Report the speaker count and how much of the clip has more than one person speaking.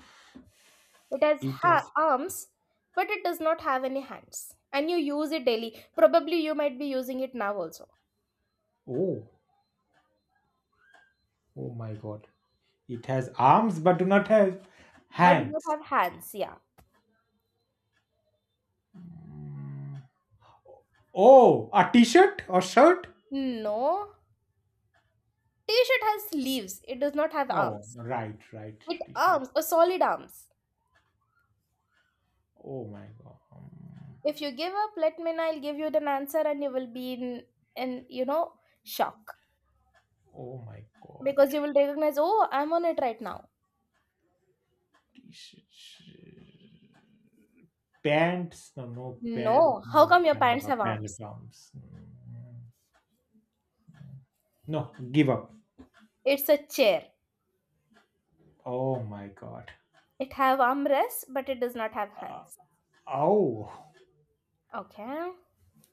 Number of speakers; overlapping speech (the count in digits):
2, about 4%